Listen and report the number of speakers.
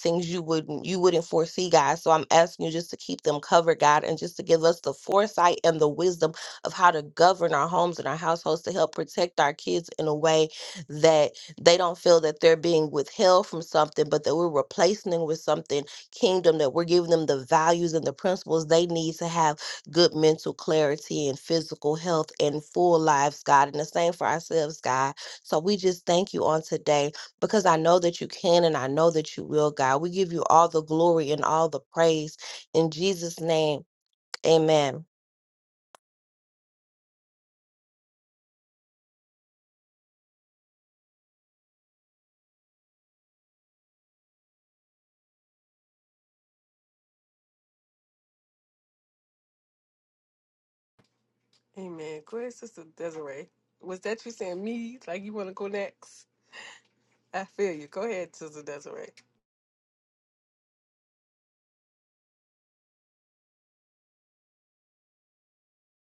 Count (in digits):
2